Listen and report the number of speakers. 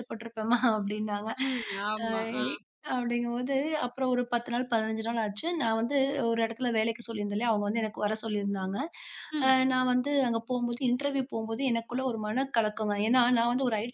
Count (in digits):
2